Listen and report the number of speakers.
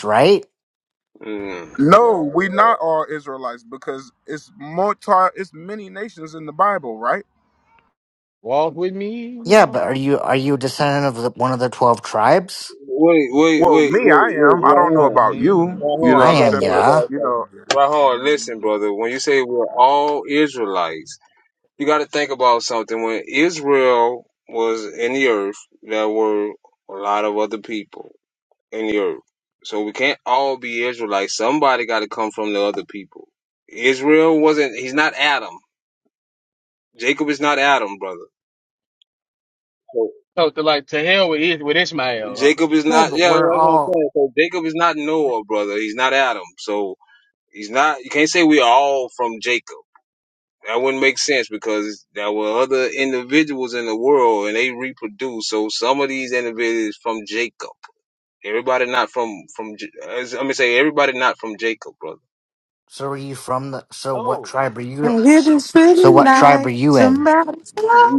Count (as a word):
five